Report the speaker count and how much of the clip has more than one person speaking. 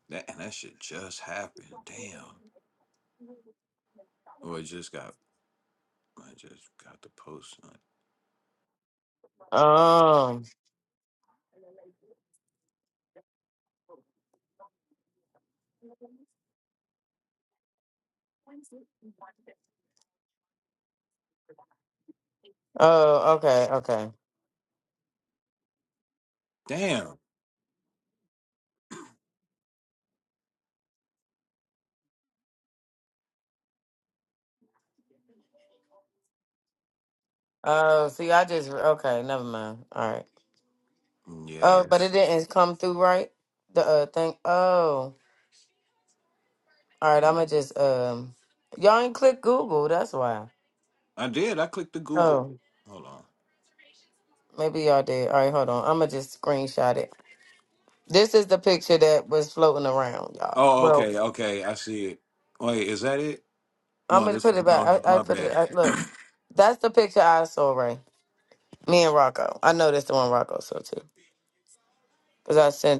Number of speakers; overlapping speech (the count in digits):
2, about 3%